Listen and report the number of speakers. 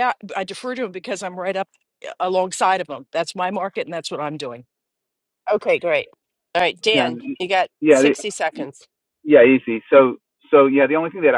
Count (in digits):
3